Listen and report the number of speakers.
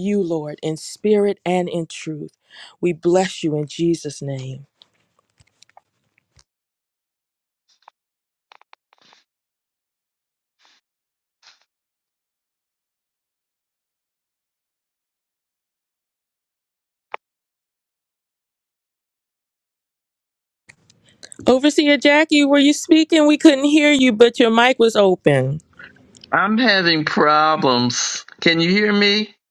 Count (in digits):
2